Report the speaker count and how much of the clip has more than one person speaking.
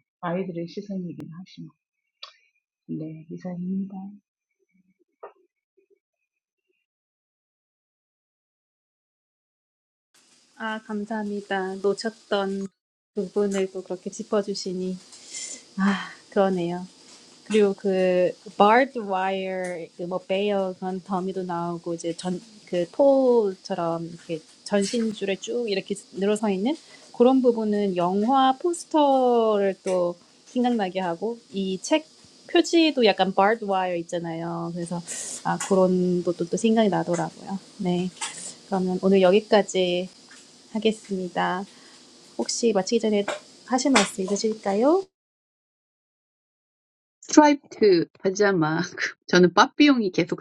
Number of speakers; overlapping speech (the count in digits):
3, no overlap